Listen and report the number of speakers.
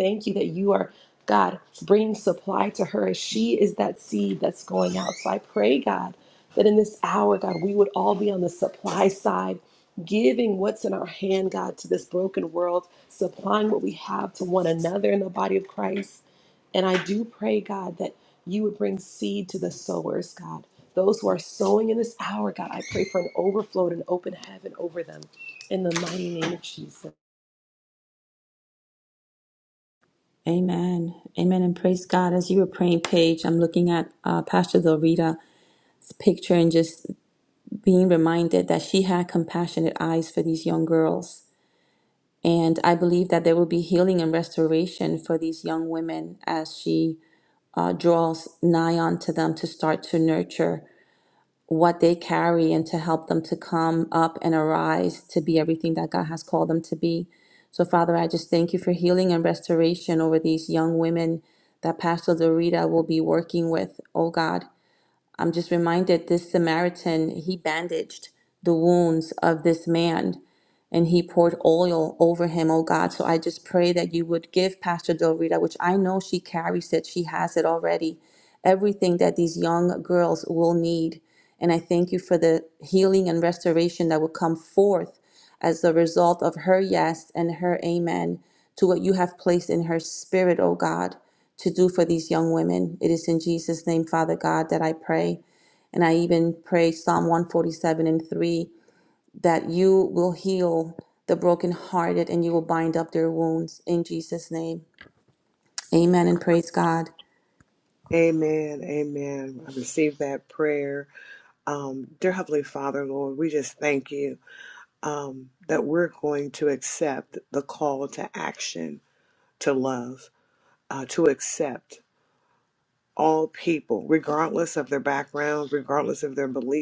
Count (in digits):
3